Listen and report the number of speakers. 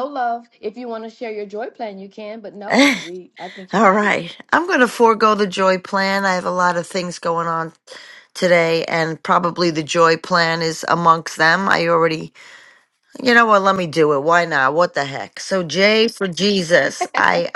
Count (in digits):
2